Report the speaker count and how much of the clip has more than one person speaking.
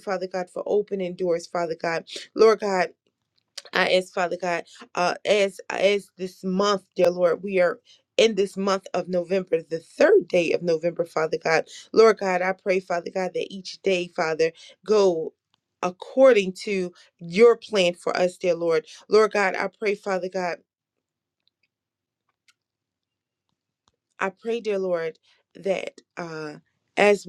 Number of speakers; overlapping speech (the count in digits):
1, no overlap